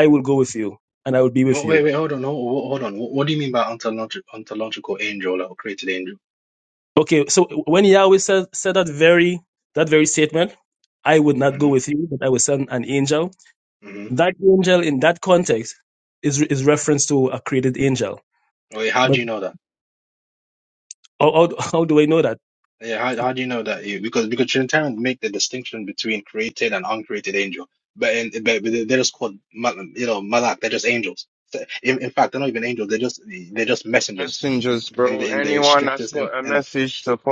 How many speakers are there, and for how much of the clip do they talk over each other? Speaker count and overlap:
3, about 7%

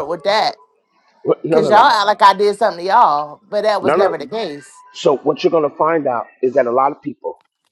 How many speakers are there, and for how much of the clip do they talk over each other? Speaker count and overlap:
2, about 11%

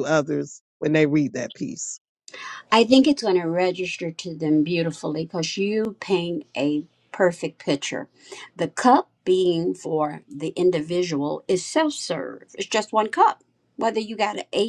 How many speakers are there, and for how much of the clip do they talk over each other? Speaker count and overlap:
2, no overlap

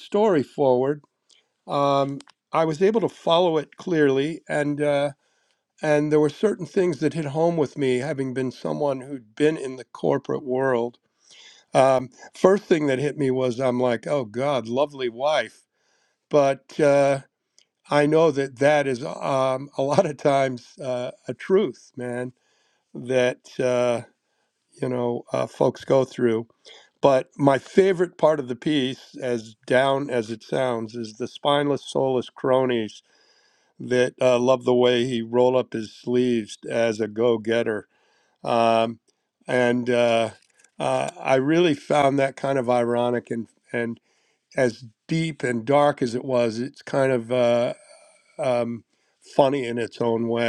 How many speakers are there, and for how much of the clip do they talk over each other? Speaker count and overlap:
1, no overlap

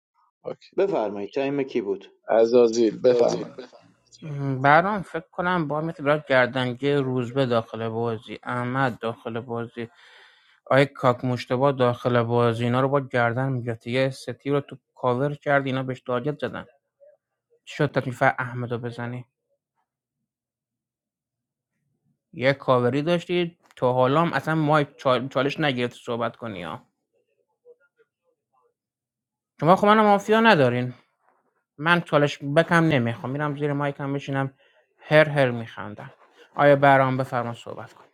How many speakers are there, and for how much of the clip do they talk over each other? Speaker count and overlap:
3, no overlap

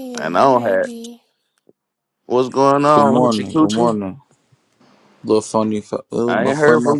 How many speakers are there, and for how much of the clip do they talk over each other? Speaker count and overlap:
3, about 35%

